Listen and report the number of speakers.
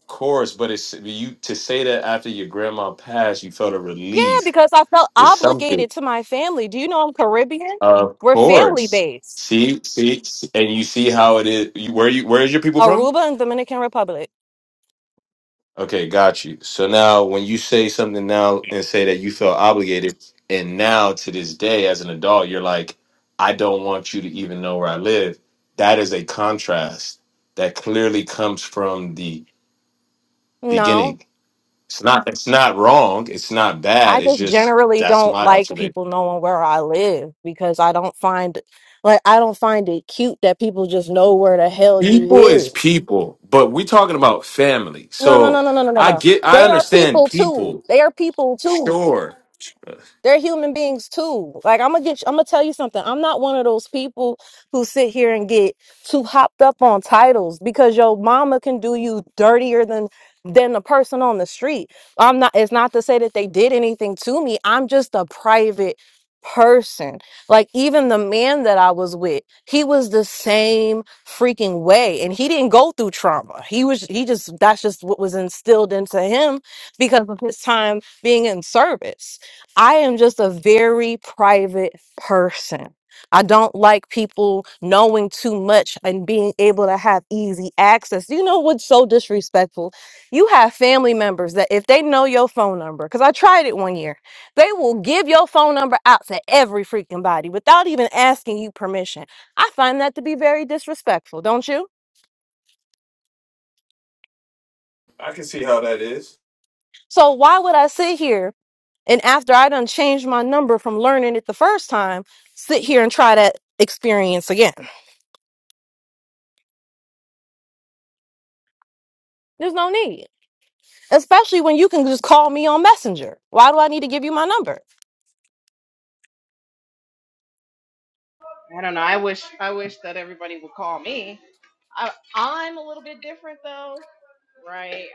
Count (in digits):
3